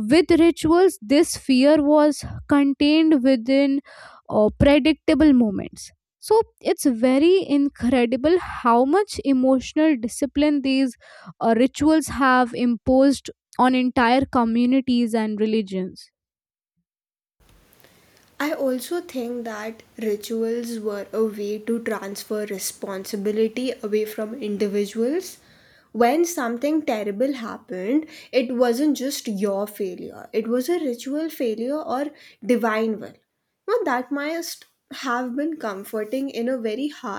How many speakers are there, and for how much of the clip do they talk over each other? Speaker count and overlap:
two, no overlap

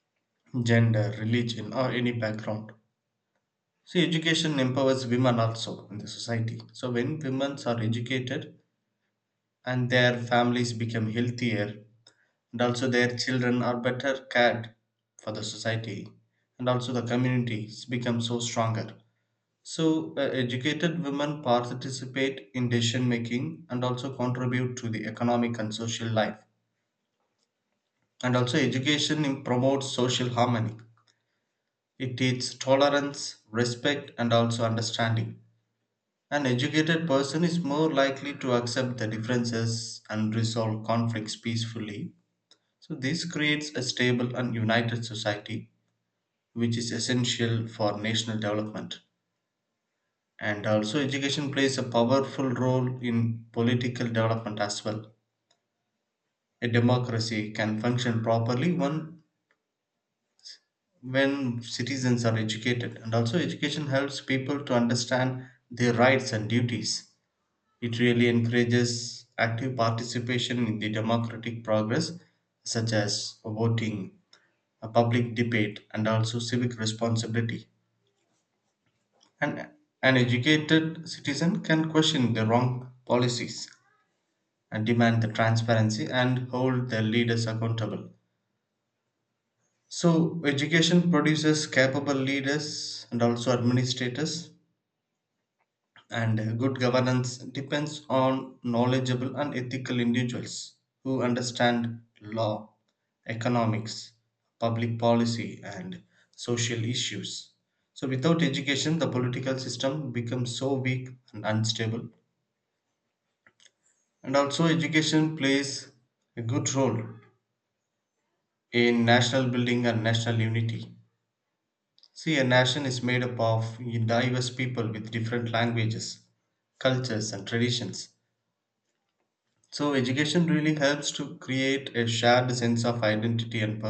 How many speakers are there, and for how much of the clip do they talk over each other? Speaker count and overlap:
one, no overlap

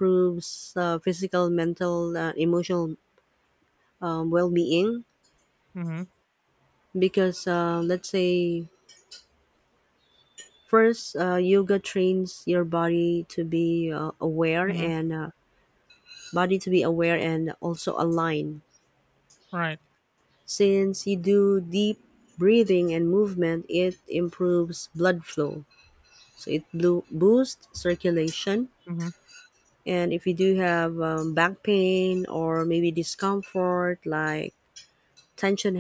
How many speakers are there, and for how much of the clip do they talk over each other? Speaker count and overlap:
two, about 1%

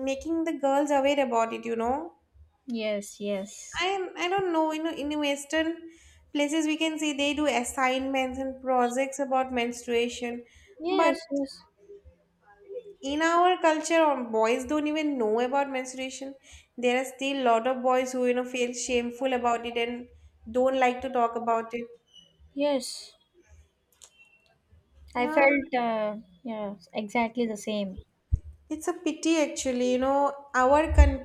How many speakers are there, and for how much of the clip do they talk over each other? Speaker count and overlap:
two, about 2%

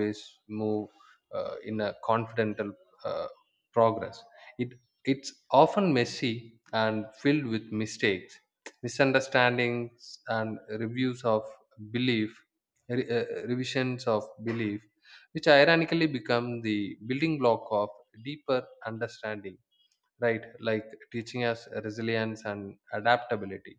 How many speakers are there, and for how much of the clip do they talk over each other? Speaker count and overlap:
one, no overlap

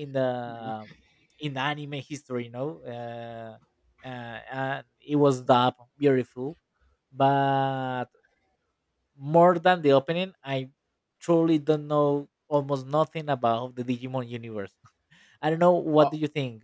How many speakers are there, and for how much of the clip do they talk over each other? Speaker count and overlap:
one, no overlap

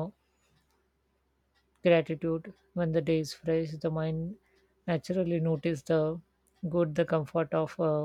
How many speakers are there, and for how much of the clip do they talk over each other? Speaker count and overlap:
one, no overlap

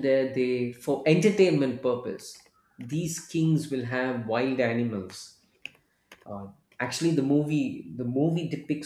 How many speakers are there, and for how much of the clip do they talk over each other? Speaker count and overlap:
one, no overlap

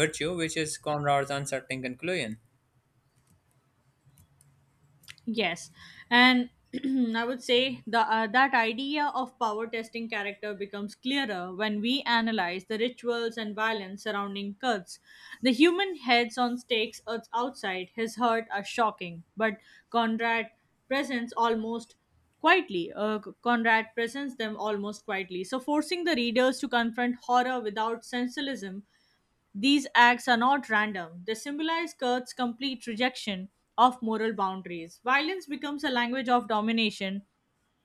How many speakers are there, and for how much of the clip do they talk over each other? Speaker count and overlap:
two, no overlap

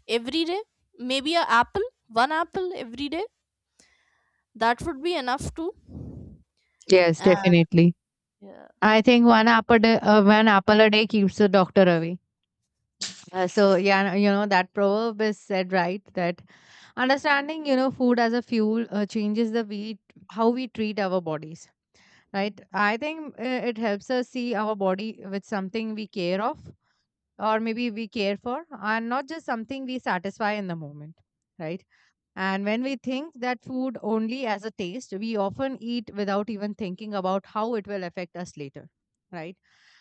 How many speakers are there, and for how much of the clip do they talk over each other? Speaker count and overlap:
two, about 1%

